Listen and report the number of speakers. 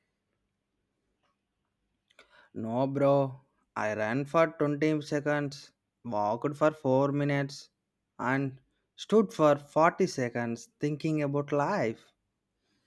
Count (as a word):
one